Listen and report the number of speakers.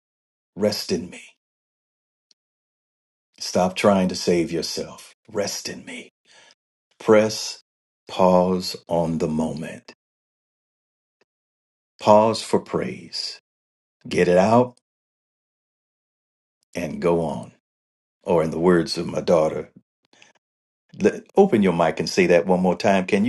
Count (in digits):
1